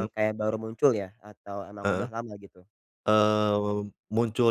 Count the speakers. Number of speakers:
two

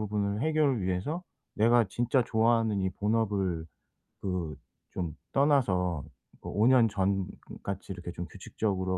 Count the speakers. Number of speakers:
one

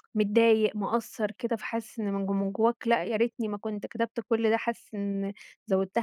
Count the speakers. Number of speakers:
one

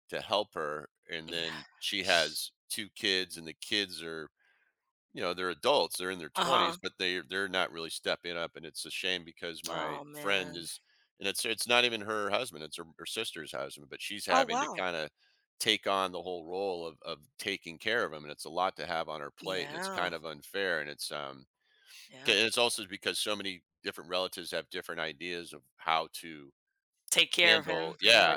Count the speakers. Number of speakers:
two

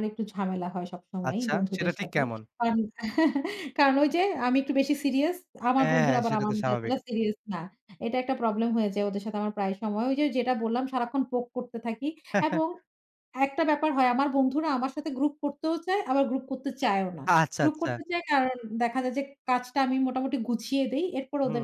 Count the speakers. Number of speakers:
two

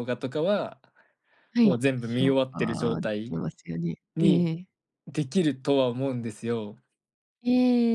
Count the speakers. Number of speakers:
two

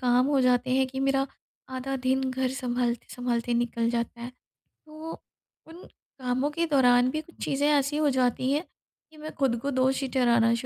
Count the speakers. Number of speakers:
one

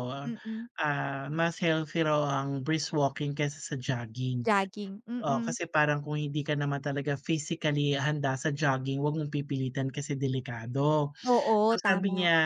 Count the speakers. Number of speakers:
two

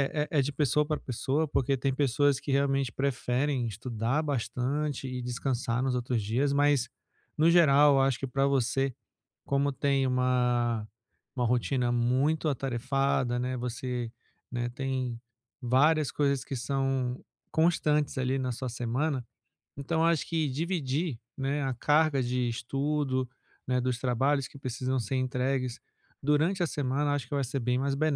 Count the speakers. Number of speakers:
one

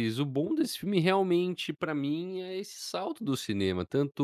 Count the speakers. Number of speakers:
one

